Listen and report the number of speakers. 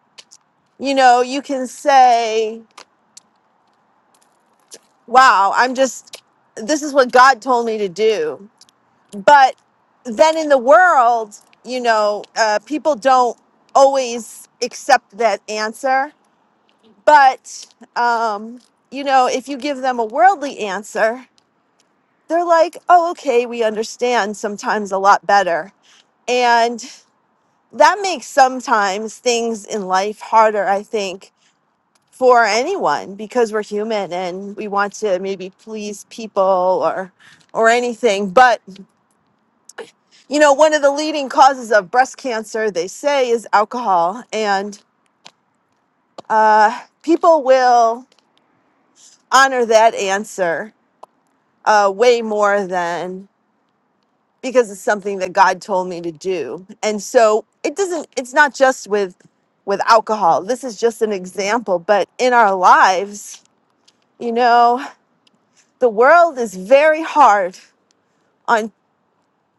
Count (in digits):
1